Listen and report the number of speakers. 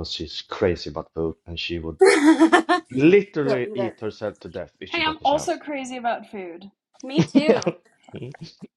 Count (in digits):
3